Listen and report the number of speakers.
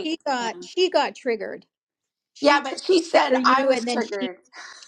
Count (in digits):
2